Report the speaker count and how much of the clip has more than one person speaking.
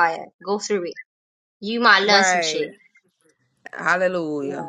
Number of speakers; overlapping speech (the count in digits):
2, about 17%